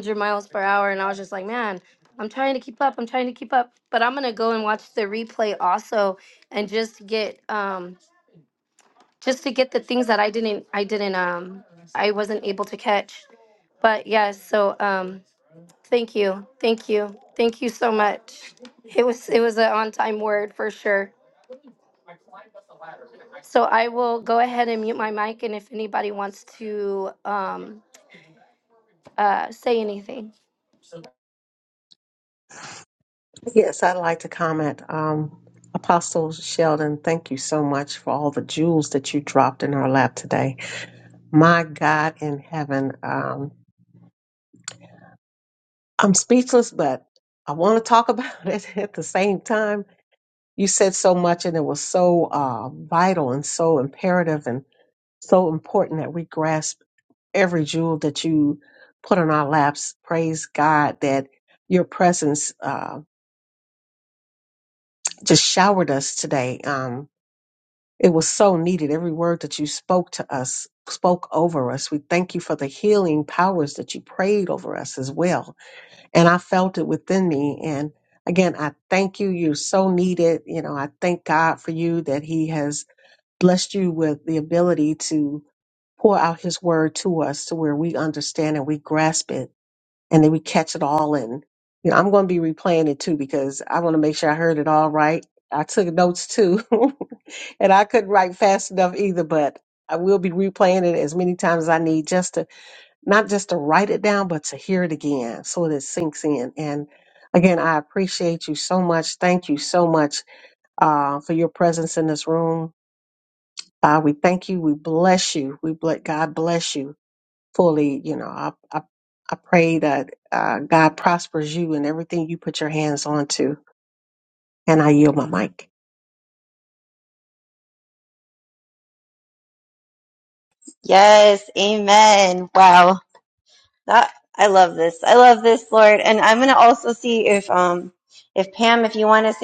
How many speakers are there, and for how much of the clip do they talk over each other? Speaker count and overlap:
three, no overlap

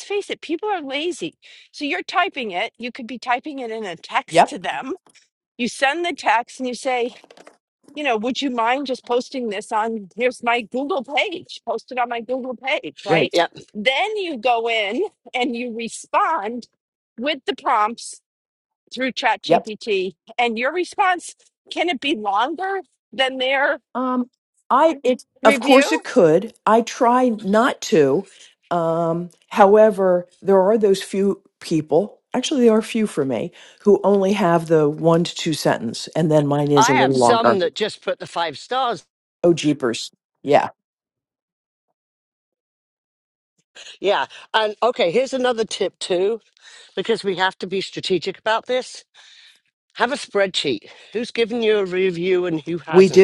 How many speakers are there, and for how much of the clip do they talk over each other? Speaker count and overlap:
three, about 4%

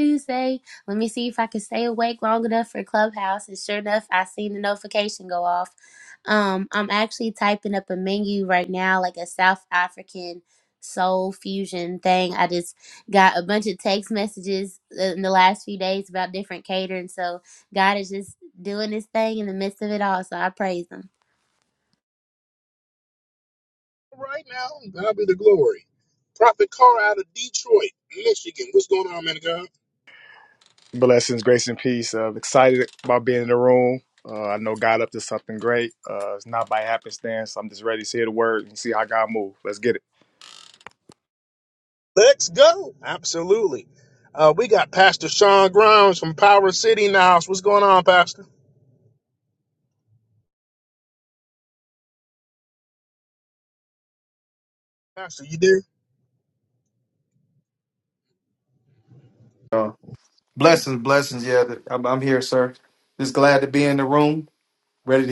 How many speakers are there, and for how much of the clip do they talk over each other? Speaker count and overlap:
four, no overlap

